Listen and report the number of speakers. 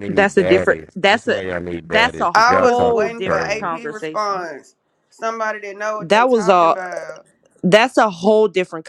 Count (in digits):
3